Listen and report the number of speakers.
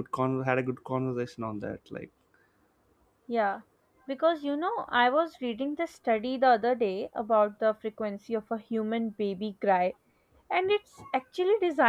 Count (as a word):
two